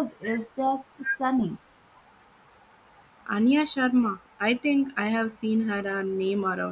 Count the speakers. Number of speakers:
two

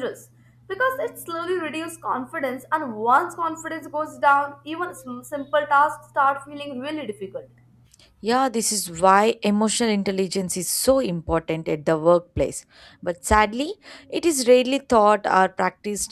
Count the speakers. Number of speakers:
two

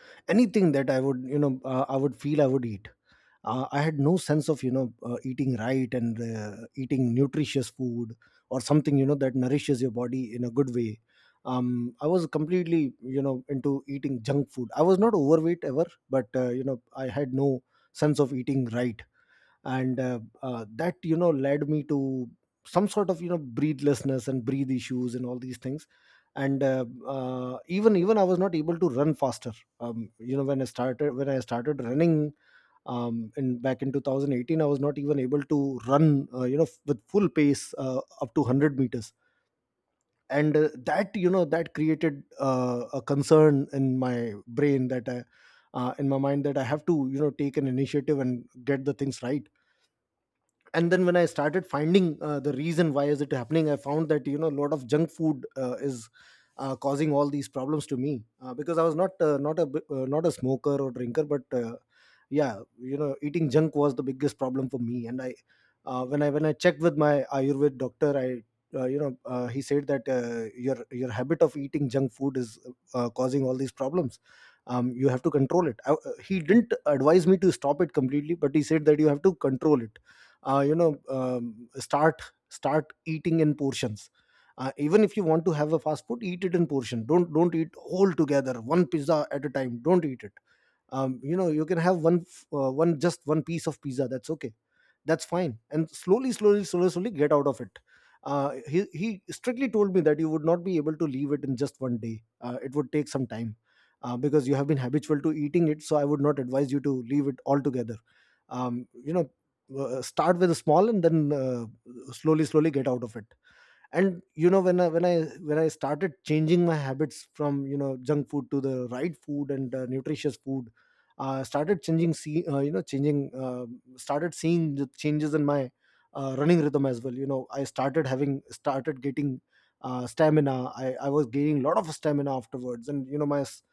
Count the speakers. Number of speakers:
one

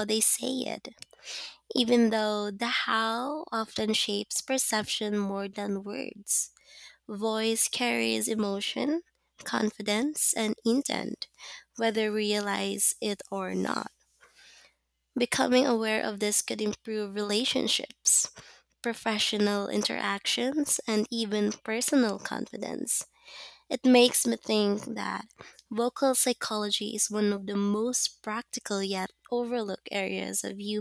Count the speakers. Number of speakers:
one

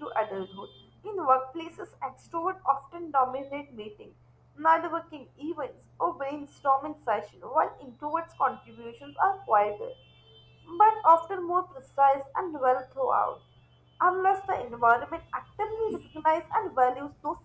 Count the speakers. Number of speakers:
one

